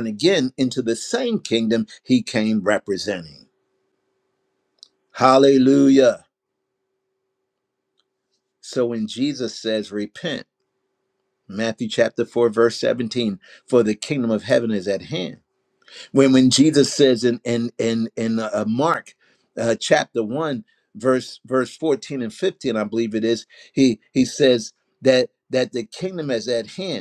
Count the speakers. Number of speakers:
one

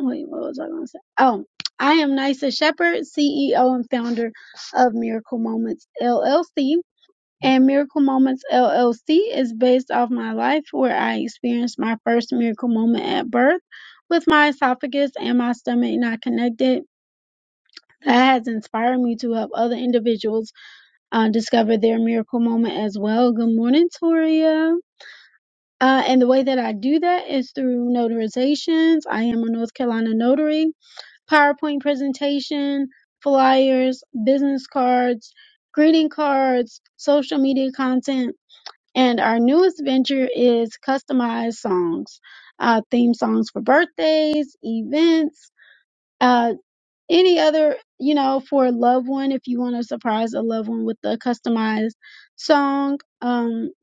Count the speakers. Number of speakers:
one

